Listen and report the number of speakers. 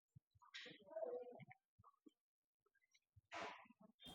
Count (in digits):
0